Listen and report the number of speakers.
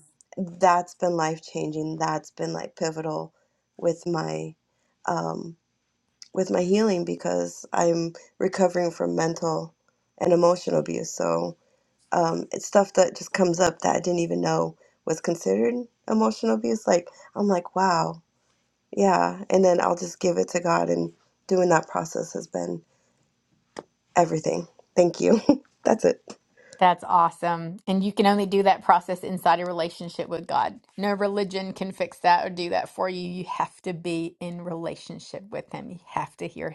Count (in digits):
2